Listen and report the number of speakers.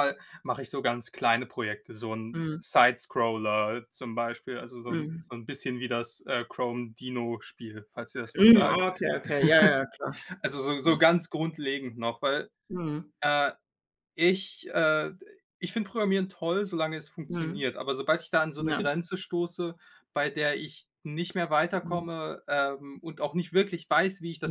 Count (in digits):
2